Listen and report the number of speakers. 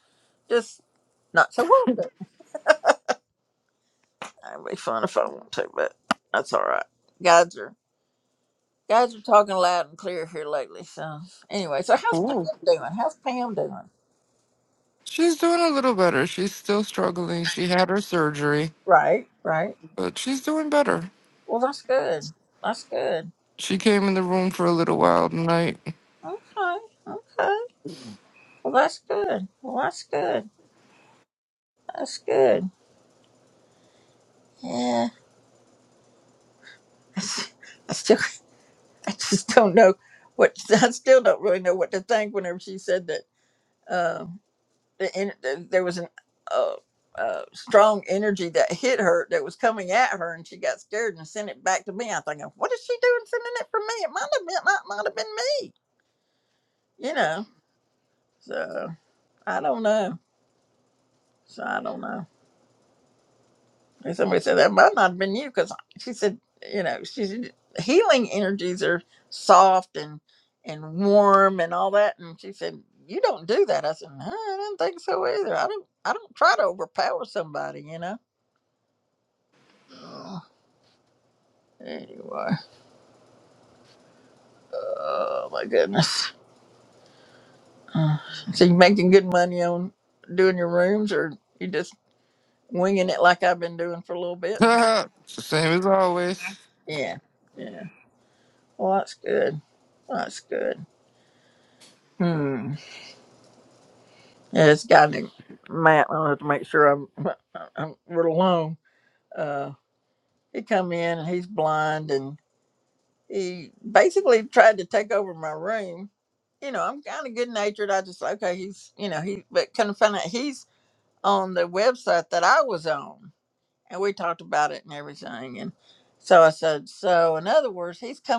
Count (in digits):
2